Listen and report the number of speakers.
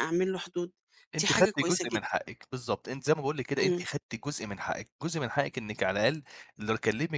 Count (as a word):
two